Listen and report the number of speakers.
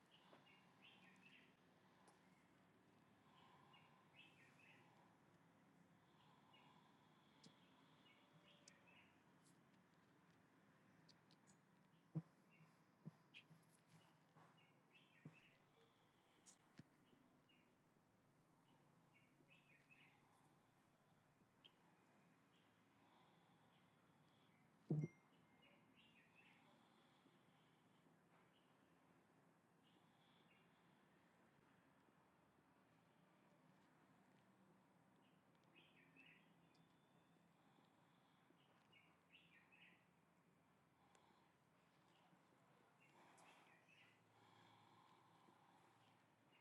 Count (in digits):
0